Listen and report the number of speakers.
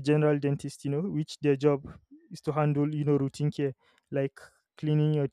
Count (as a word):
one